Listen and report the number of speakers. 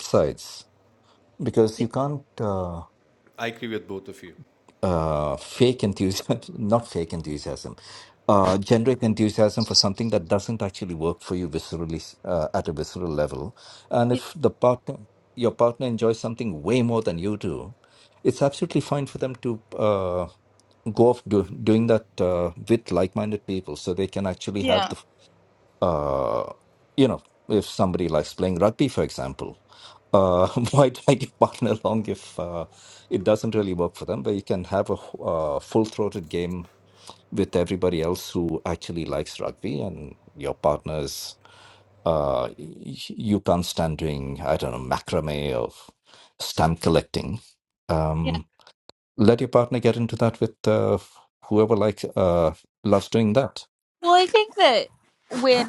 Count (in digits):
3